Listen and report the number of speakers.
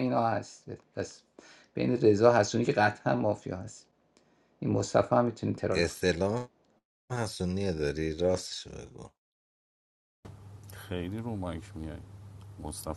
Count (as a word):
three